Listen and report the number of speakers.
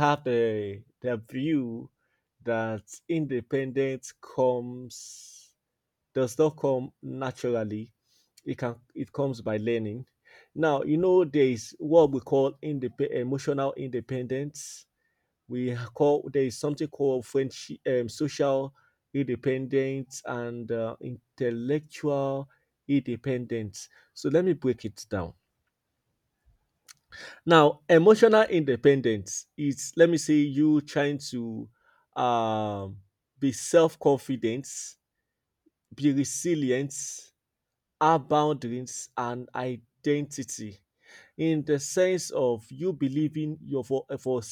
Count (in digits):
1